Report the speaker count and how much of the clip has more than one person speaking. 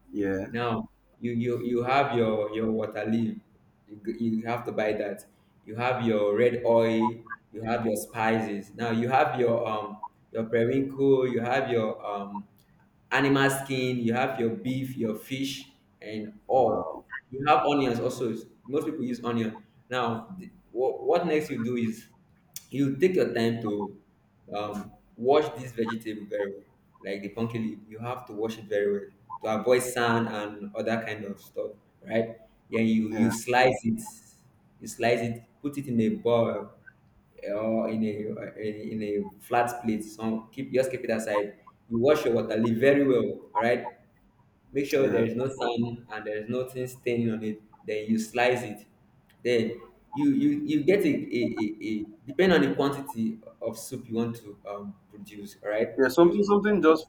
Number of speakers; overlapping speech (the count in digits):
2, about 3%